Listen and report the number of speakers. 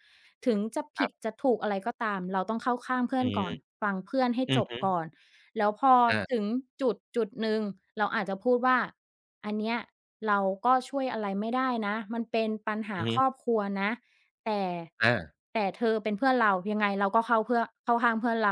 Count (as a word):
two